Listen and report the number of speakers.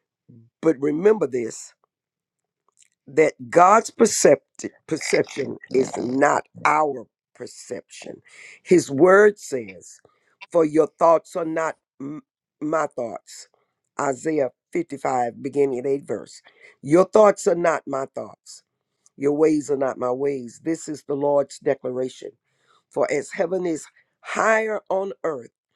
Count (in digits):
1